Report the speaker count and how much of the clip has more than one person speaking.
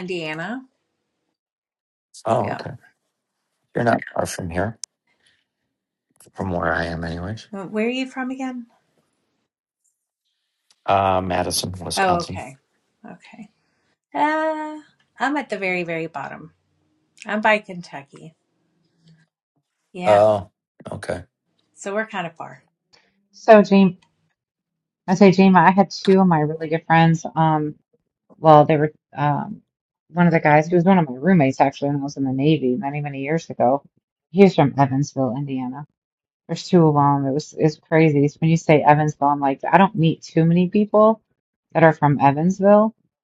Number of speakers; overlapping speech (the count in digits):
3, about 2%